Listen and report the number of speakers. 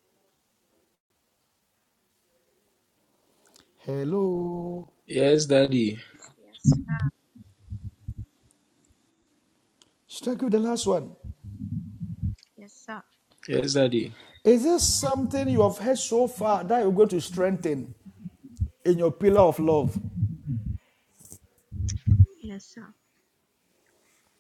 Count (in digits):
3